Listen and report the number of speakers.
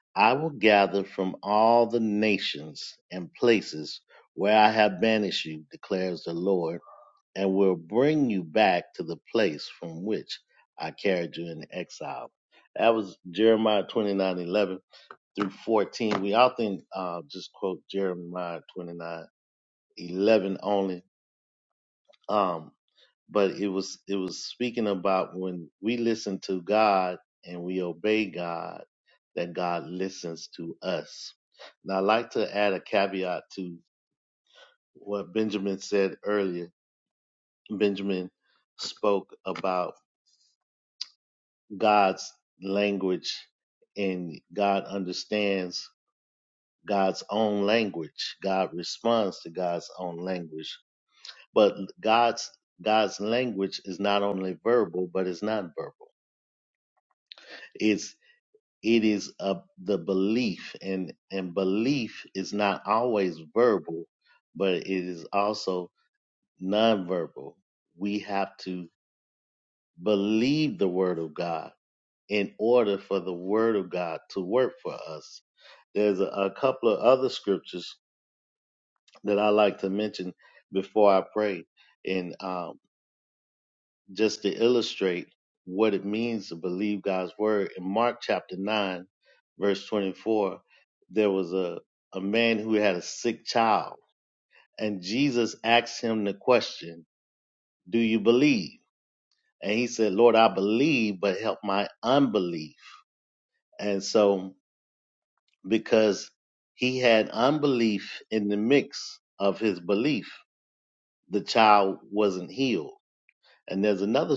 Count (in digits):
1